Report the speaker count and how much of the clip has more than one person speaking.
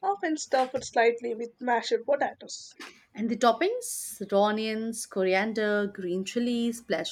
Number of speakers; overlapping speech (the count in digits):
2, no overlap